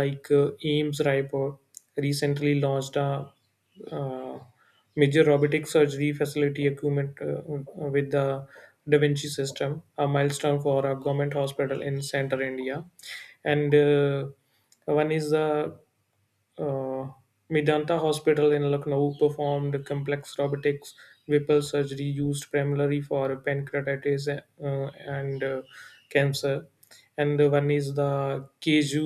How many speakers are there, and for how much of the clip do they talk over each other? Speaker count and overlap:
one, no overlap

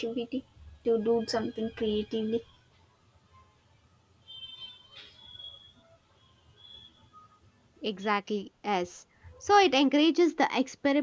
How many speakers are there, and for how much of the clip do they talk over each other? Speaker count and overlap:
two, no overlap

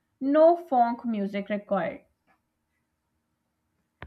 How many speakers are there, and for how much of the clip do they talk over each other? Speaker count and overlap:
one, no overlap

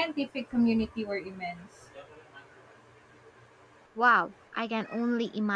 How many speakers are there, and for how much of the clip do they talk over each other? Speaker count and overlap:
two, no overlap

